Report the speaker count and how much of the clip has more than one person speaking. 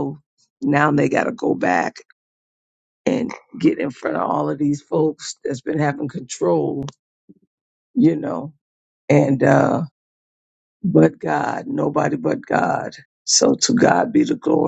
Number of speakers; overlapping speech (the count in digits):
1, no overlap